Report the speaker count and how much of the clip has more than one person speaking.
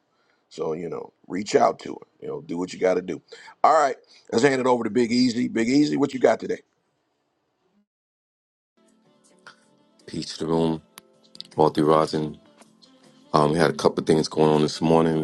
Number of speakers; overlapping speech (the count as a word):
two, no overlap